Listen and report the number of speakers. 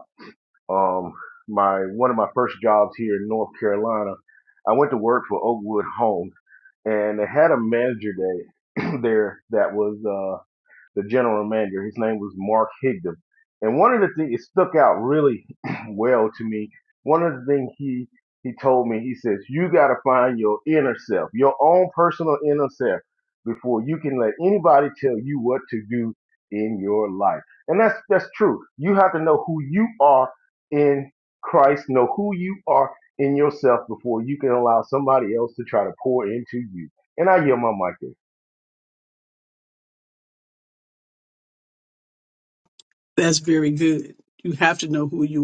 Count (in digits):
2